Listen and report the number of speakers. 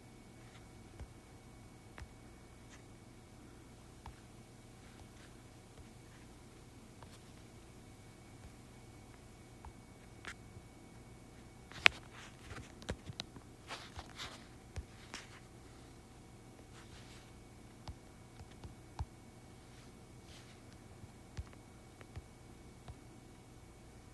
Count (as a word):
zero